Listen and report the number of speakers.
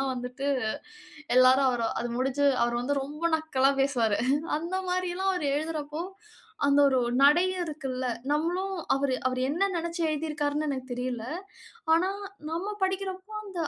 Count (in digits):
1